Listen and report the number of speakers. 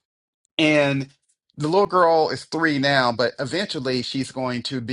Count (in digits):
1